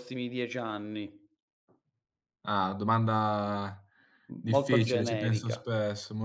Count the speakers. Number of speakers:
2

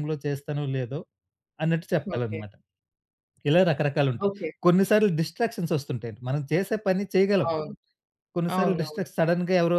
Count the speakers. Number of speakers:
2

